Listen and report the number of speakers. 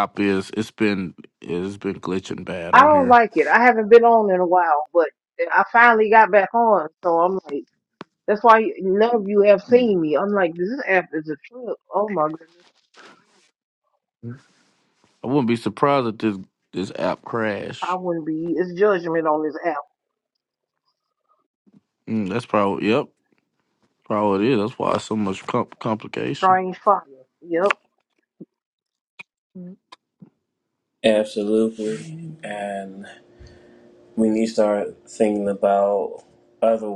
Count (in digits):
3